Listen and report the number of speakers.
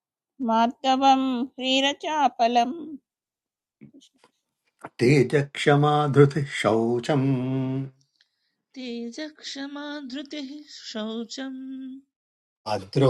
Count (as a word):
three